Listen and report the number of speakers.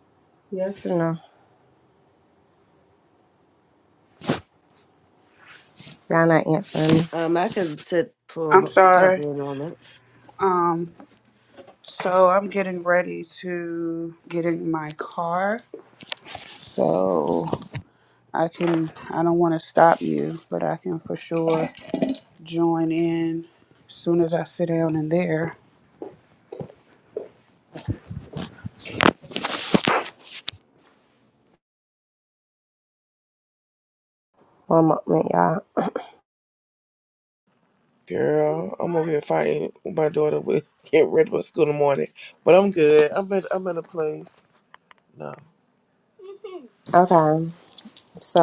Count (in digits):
4